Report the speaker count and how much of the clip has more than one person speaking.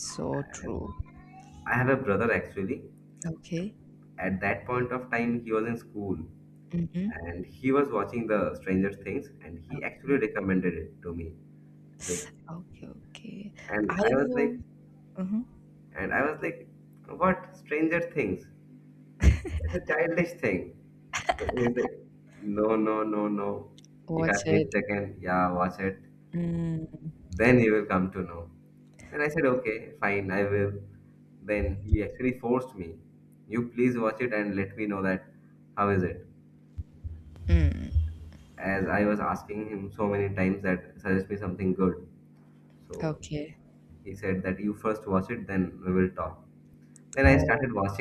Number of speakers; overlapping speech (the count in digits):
2, about 5%